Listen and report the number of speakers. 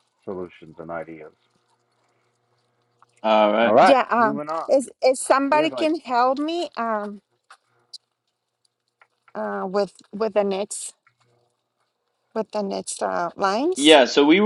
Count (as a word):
three